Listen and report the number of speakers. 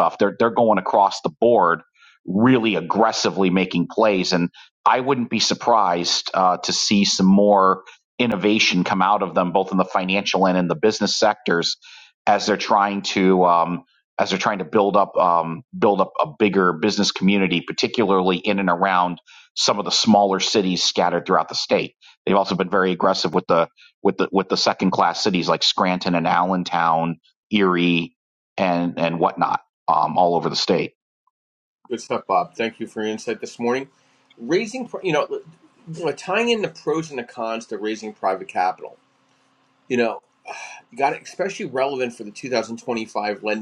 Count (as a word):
two